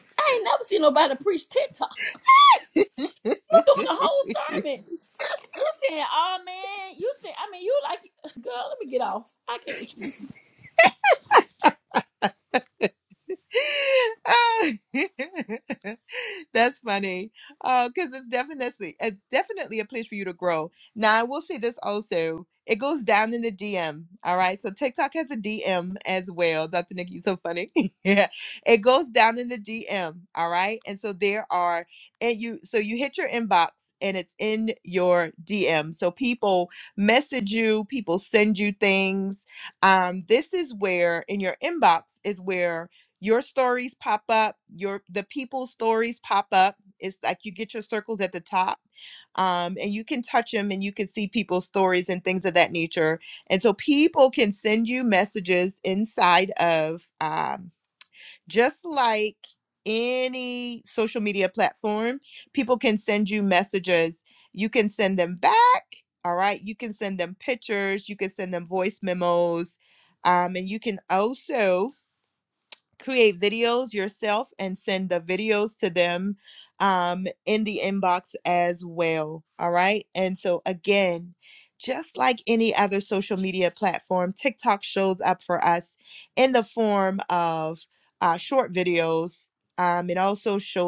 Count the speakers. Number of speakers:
two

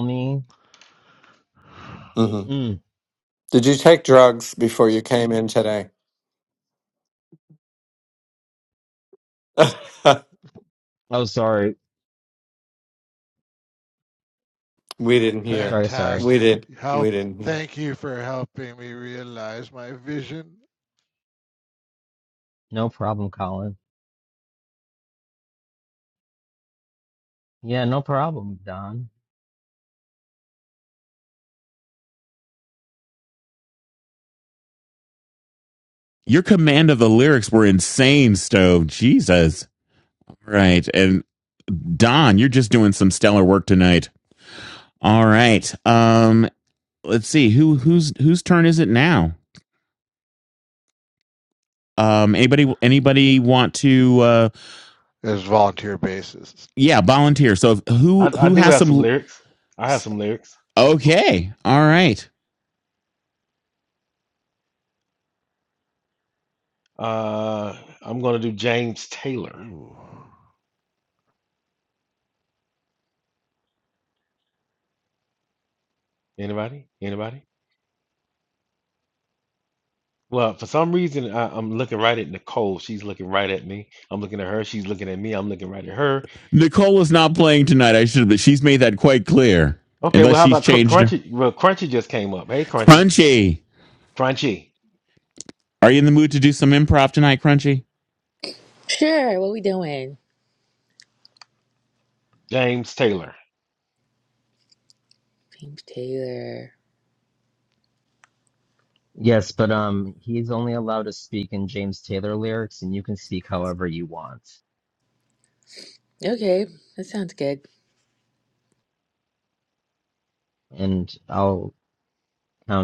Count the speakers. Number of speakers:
six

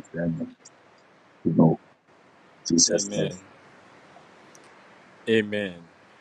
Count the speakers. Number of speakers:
two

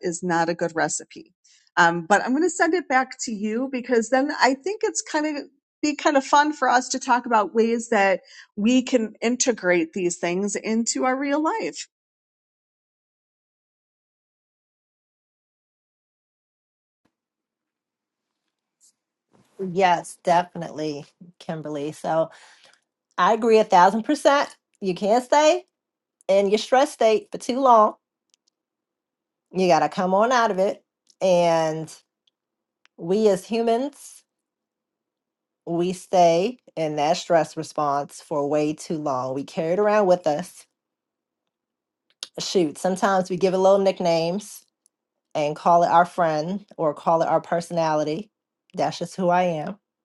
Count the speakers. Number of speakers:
two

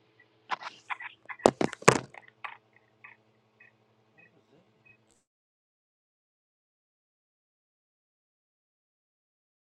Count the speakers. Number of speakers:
zero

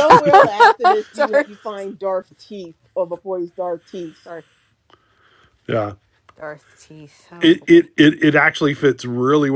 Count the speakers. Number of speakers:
three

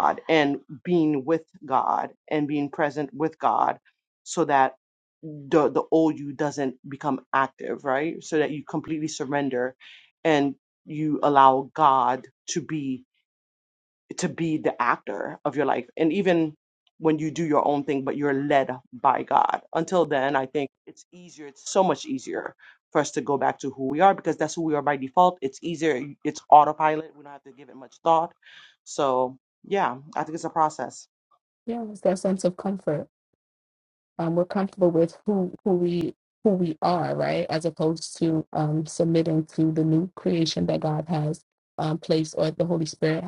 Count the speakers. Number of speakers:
two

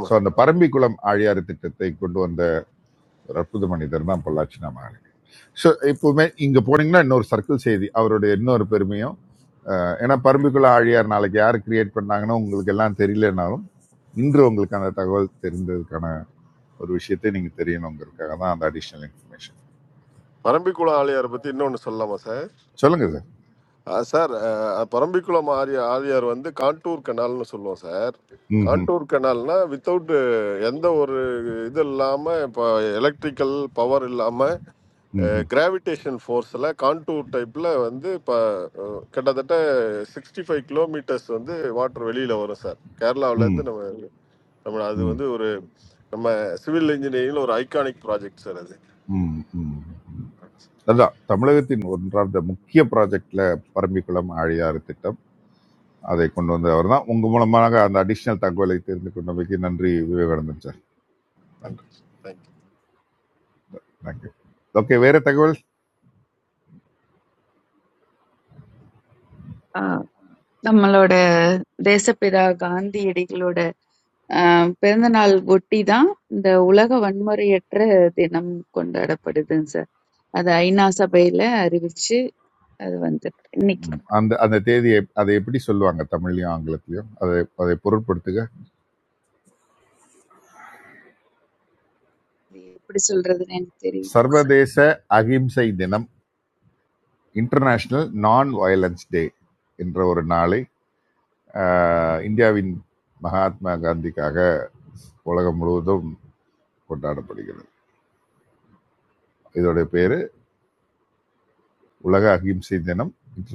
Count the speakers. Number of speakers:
three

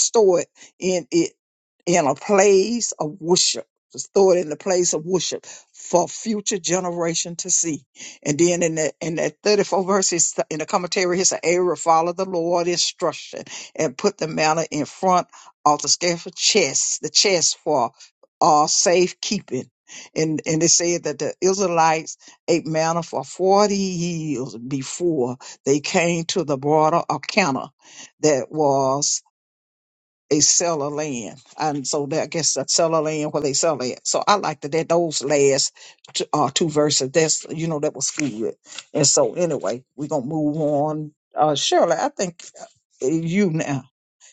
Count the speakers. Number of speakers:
one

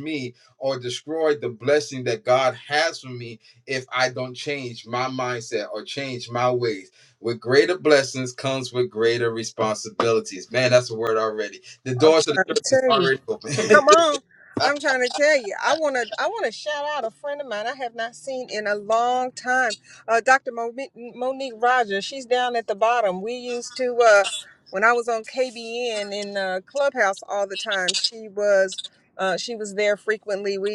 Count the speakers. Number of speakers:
two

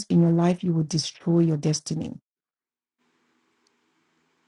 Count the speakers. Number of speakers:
one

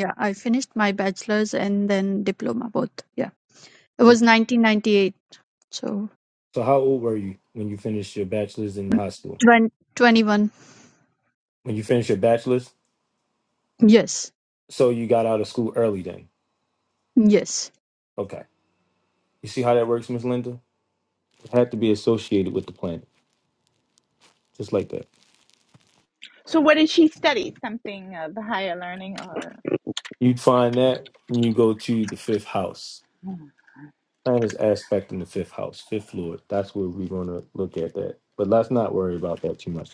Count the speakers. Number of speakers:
three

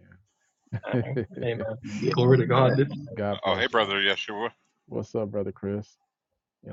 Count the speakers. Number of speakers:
three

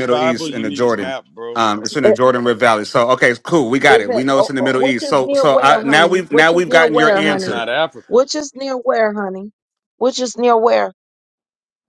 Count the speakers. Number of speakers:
three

